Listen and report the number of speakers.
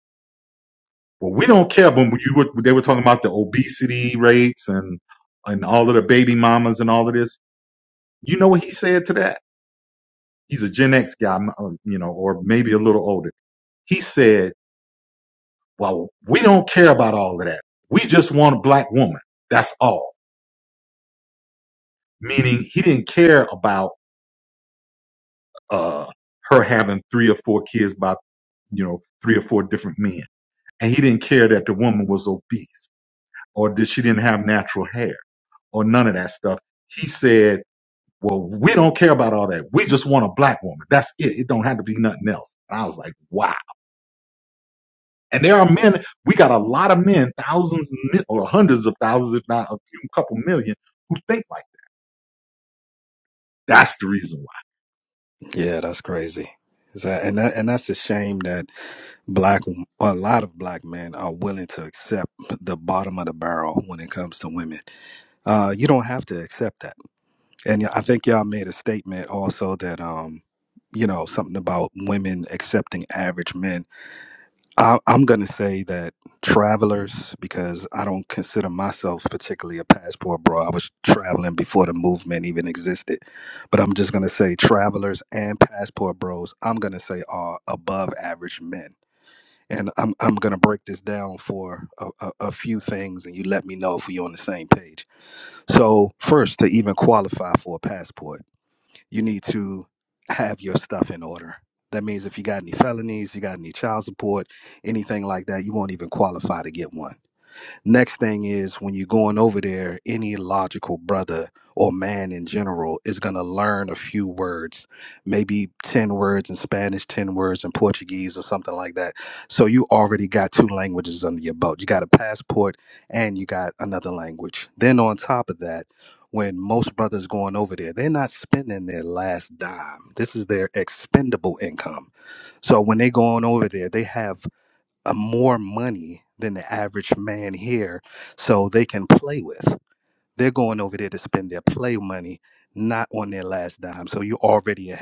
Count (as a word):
two